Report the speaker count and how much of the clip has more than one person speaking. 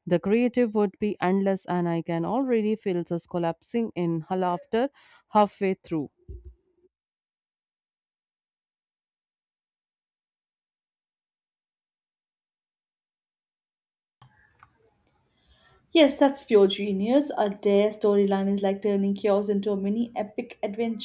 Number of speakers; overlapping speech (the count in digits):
2, no overlap